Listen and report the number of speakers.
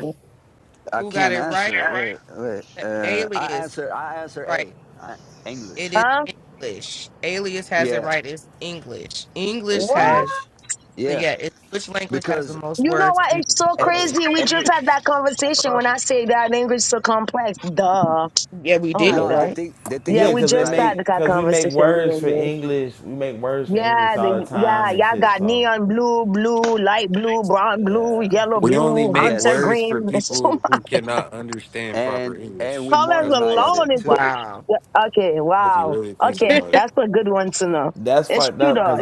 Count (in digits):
5